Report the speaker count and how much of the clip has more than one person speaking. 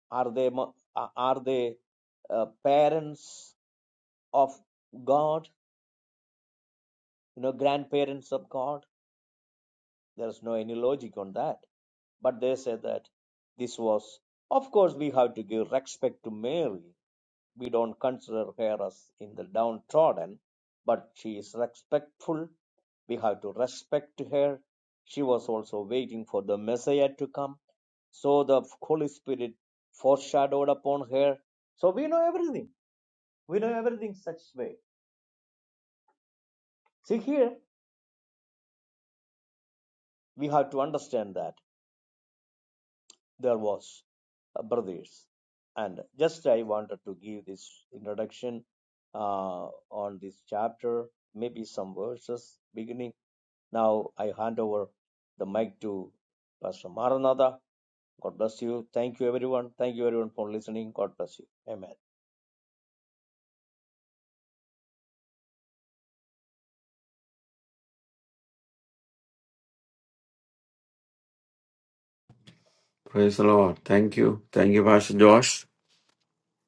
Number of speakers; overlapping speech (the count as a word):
two, no overlap